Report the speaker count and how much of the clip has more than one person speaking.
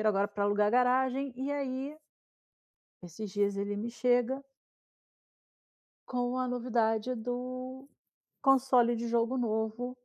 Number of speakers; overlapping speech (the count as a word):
one, no overlap